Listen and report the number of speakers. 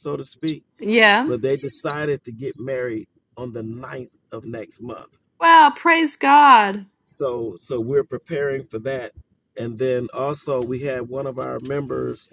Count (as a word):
two